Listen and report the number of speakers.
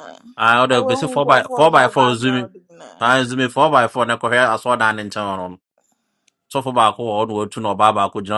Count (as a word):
two